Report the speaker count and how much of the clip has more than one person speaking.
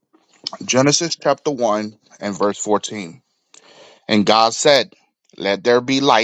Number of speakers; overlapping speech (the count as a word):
one, no overlap